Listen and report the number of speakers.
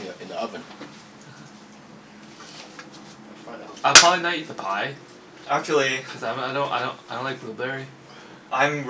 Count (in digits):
3